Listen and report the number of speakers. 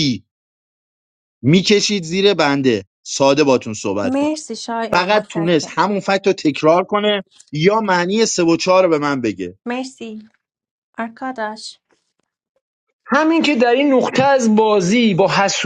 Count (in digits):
3